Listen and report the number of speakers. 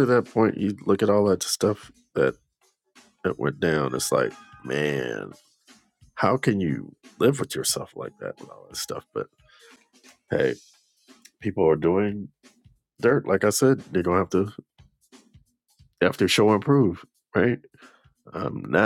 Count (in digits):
1